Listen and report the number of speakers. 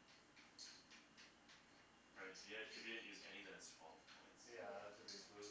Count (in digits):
2